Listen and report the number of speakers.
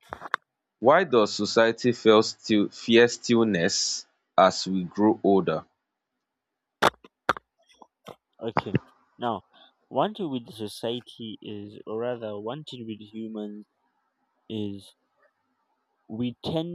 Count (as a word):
two